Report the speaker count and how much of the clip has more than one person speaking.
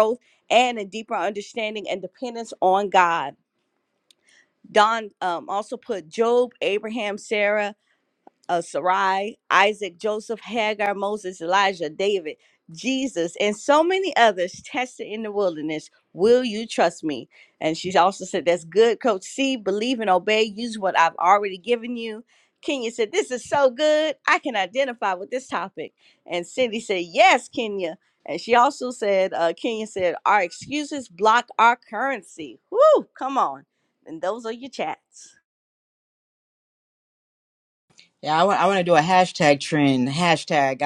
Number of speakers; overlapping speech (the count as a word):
two, no overlap